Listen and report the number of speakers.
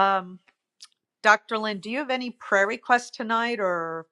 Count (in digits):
1